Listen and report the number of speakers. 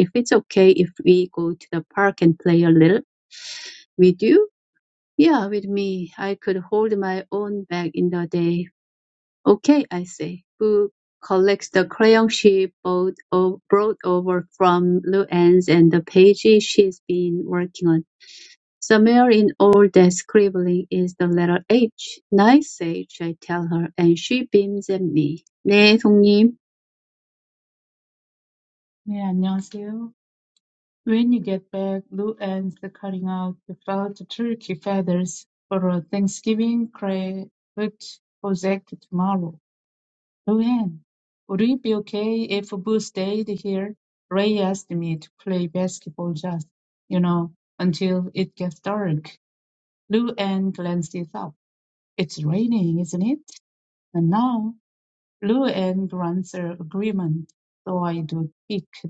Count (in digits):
2